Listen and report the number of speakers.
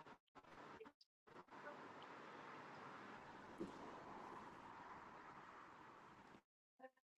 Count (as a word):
zero